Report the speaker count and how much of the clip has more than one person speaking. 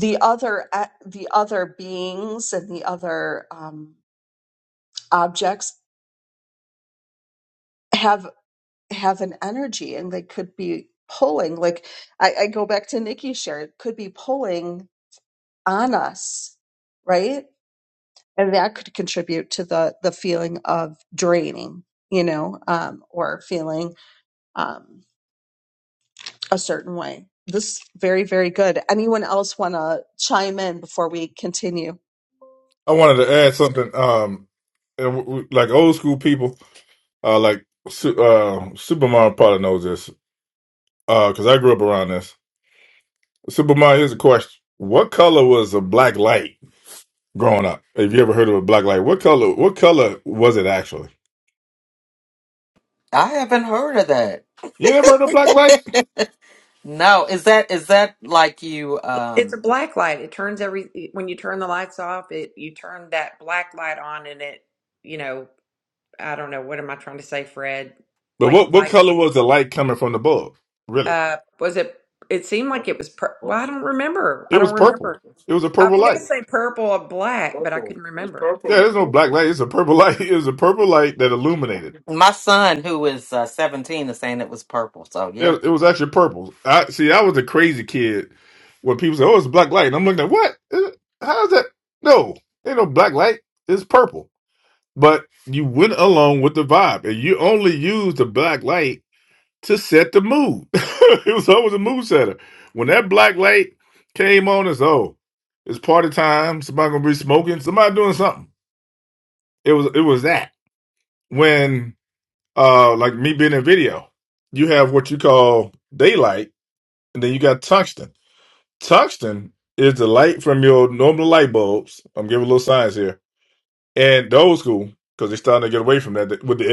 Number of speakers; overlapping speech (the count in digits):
4, about 2%